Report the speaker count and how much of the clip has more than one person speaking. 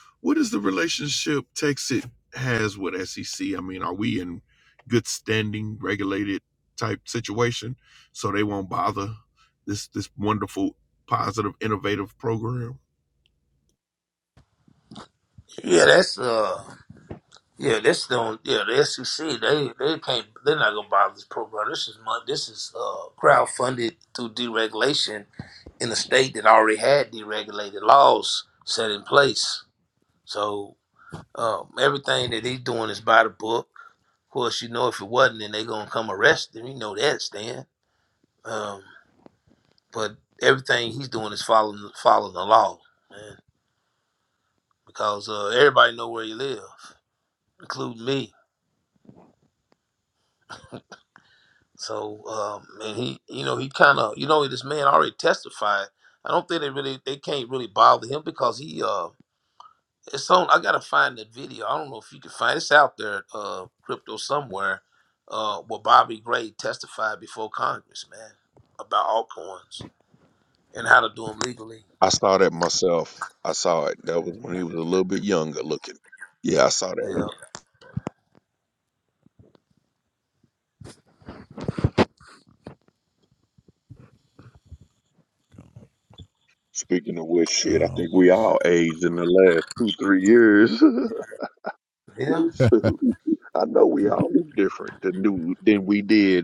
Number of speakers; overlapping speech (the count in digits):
2, under 1%